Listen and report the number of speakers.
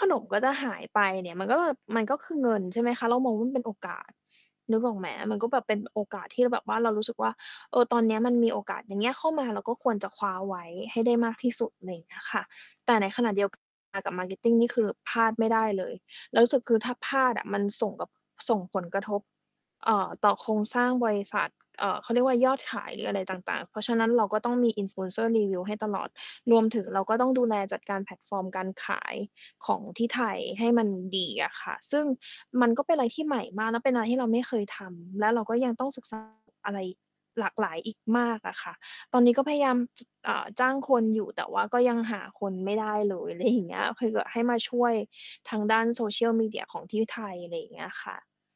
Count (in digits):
1